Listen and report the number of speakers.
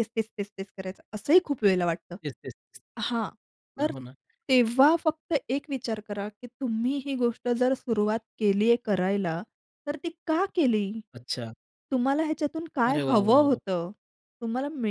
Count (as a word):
two